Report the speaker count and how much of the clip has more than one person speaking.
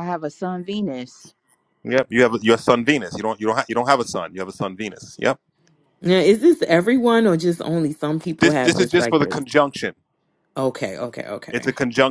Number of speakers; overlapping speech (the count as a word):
three, about 9%